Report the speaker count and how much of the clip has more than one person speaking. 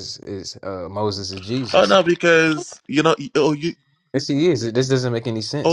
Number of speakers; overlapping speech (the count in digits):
2, about 6%